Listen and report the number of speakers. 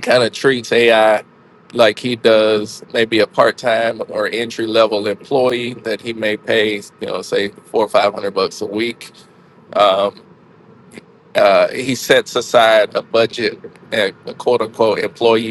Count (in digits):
1